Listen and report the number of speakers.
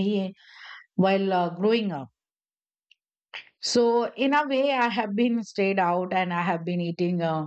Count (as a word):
one